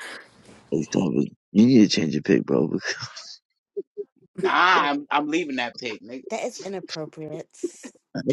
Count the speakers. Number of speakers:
3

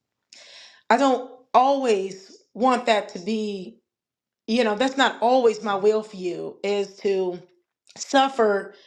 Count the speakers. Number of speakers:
1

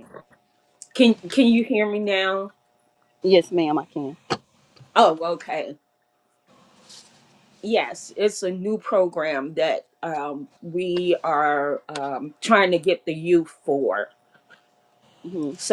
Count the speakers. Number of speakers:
2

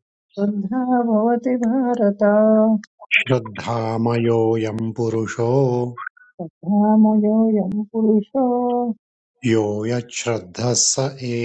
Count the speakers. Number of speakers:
2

